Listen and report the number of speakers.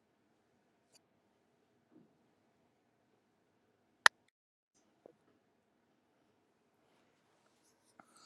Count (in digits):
0